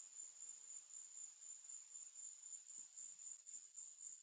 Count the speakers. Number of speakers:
zero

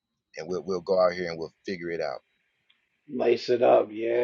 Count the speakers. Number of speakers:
two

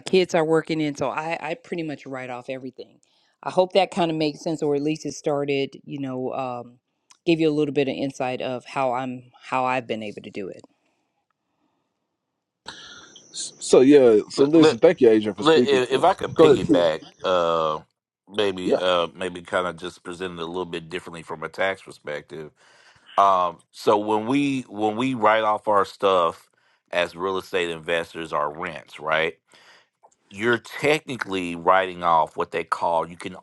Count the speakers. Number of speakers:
three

